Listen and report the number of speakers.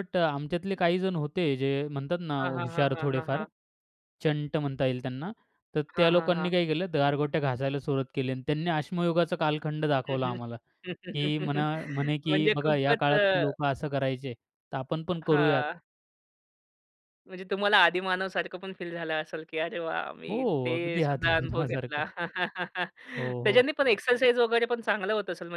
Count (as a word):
two